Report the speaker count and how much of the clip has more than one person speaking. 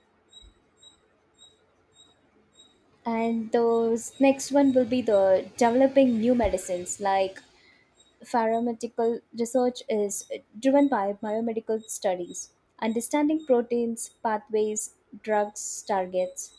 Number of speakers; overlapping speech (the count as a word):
one, no overlap